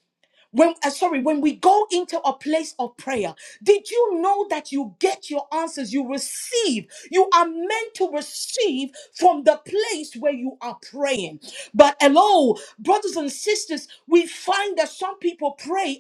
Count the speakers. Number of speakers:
one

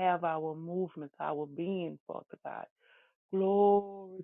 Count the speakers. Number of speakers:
one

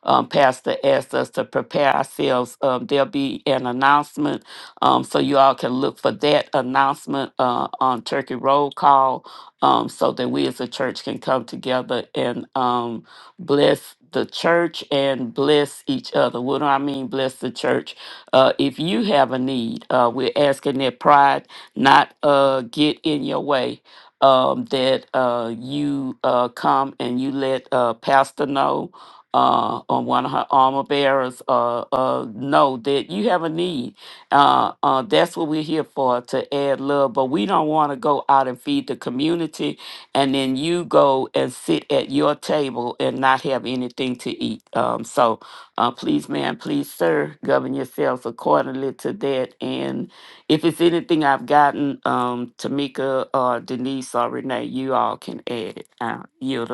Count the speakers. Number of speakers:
one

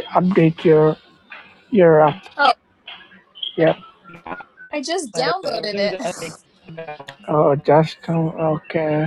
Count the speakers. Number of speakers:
three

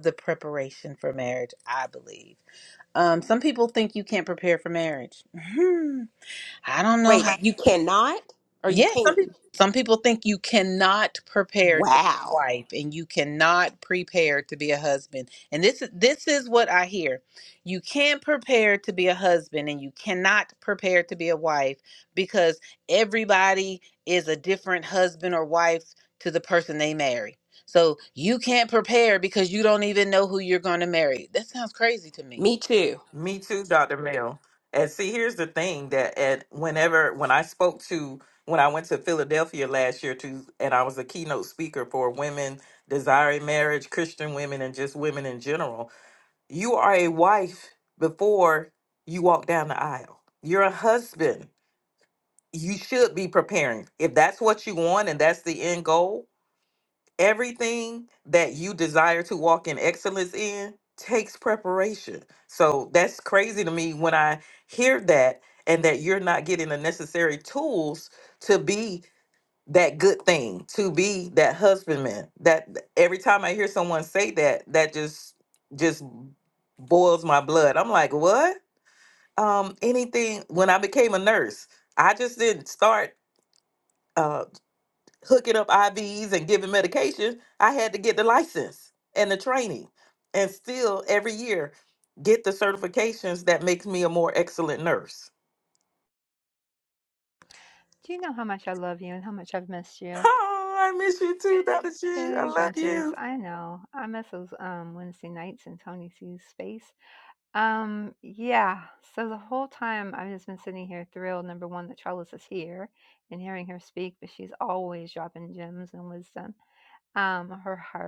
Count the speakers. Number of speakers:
four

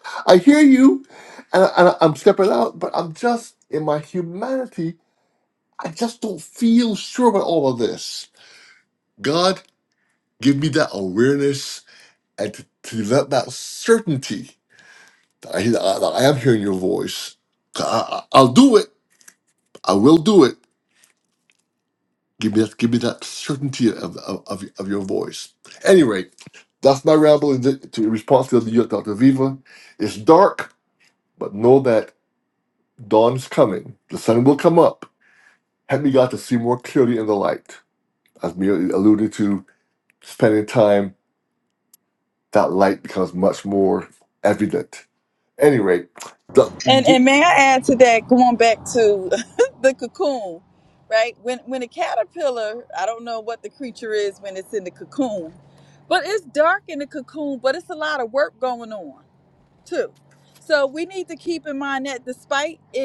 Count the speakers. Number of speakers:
two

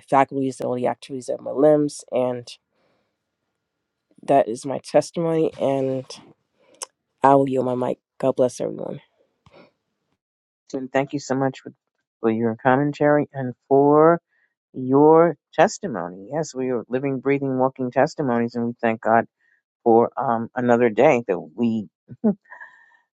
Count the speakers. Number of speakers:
two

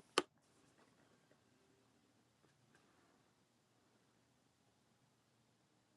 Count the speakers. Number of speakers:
zero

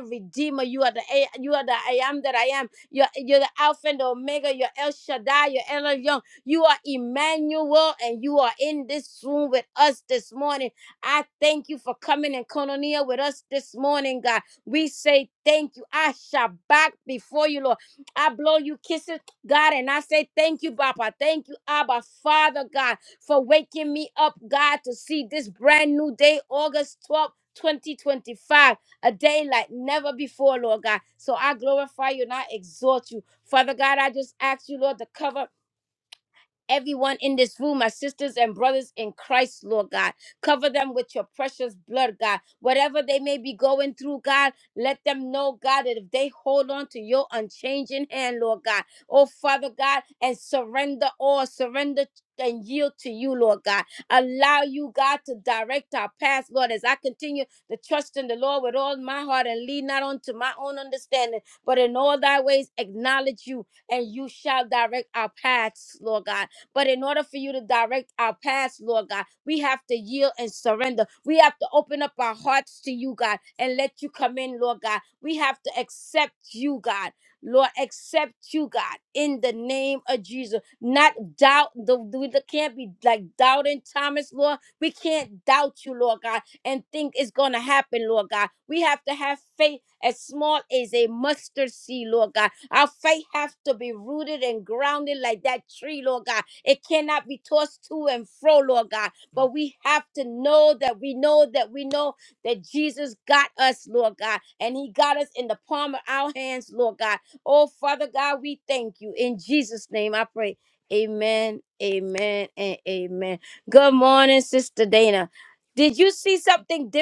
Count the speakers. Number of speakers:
one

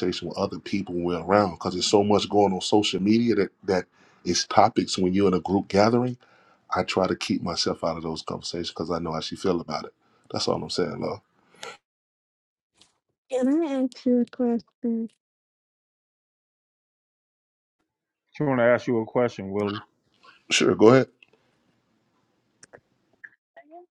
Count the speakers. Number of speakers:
three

